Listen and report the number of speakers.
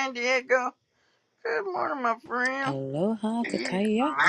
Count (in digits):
2